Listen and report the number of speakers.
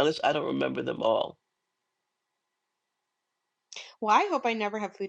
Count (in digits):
2